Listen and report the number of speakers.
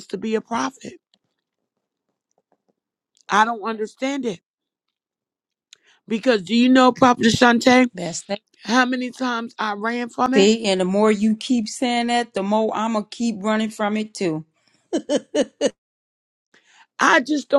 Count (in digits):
2